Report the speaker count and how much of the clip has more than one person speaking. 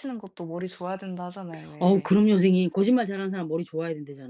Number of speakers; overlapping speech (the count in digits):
2, about 7%